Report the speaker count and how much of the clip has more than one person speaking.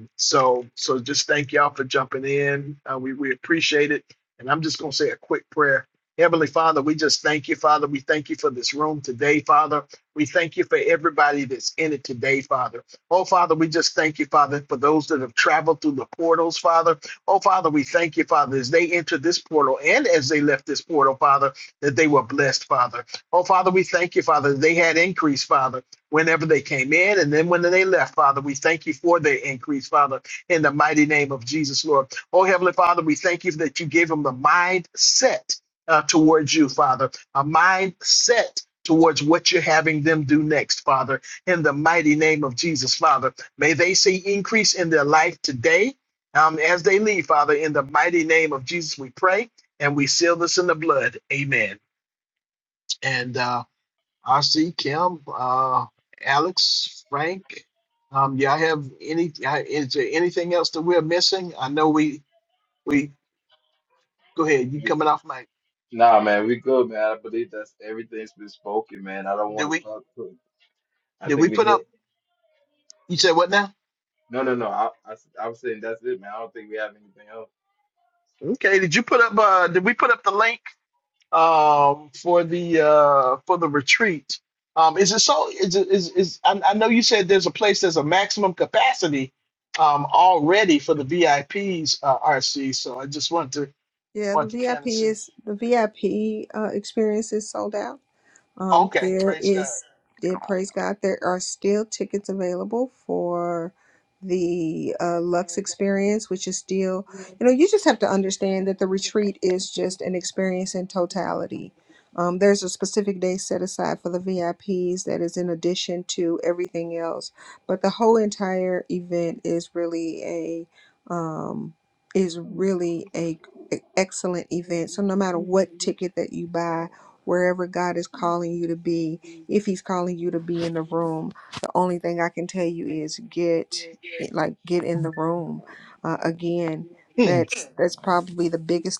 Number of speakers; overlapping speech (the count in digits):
3, about 2%